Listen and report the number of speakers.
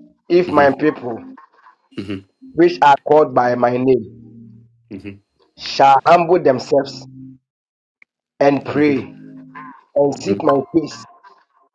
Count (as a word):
two